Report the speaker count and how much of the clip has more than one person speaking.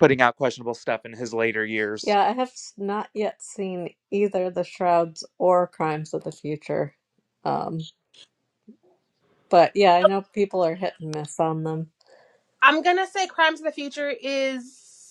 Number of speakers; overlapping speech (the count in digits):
3, no overlap